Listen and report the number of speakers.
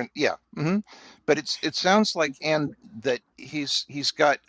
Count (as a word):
one